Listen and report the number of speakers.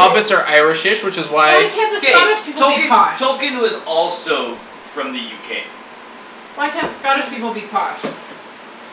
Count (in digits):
3